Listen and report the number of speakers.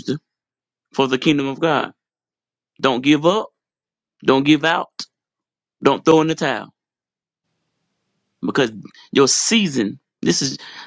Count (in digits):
1